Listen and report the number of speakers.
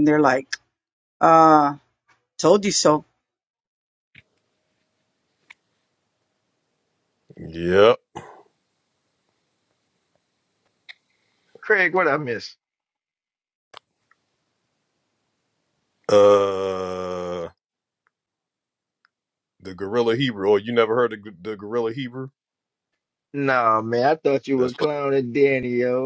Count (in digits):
3